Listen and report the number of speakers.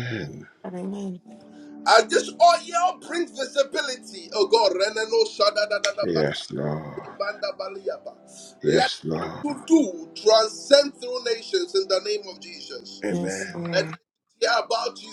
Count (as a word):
three